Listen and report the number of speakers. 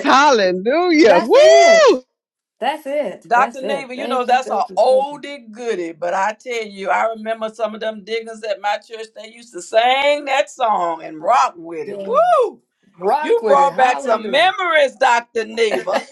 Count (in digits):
3